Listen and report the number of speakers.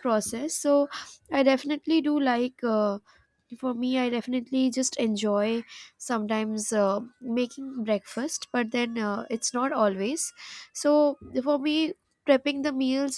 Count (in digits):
1